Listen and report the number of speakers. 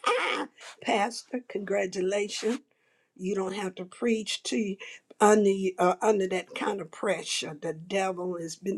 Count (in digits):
1